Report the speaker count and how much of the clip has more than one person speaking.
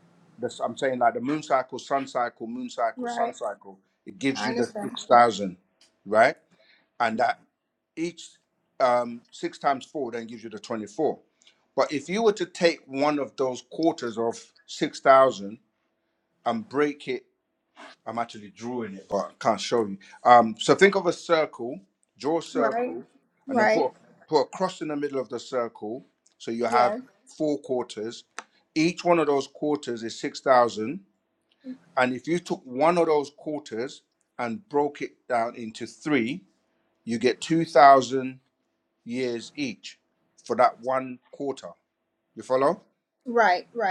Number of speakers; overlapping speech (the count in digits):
2, about 5%